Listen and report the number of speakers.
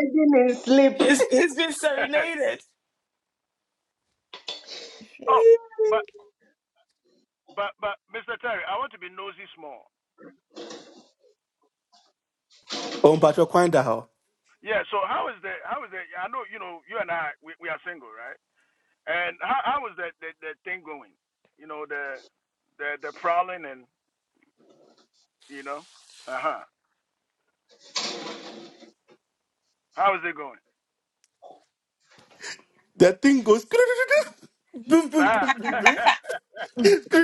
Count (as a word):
four